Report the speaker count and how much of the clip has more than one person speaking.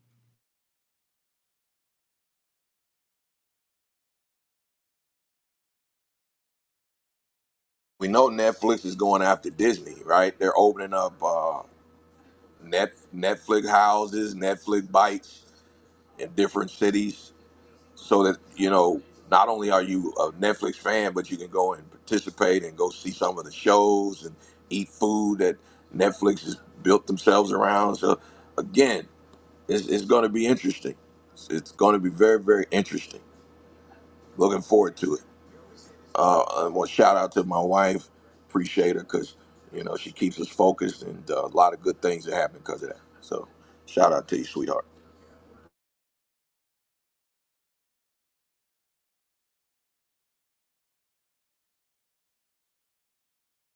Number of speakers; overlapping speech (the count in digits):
1, no overlap